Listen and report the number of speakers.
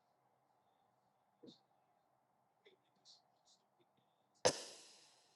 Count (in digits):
0